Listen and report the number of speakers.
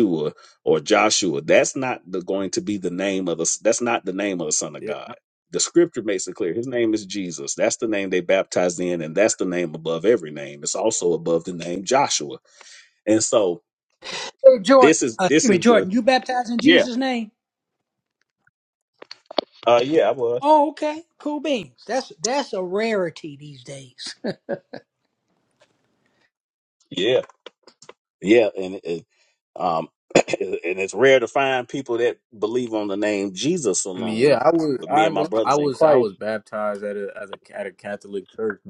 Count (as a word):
three